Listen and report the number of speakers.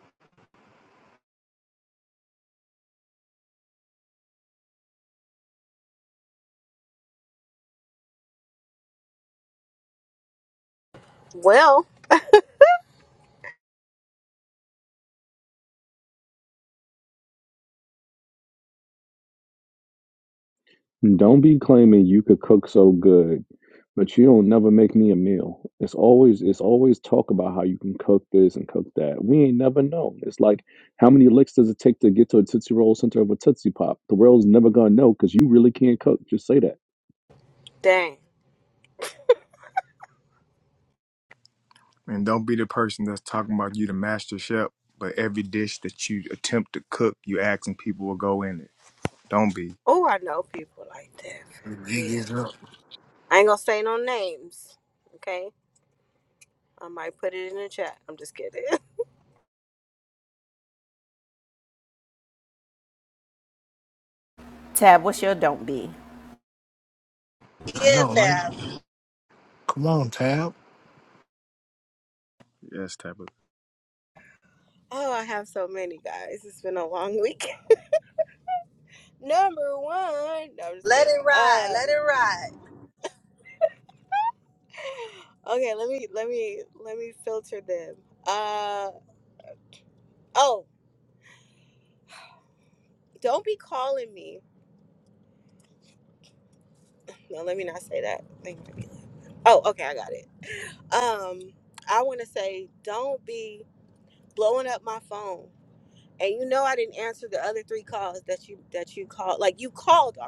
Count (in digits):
6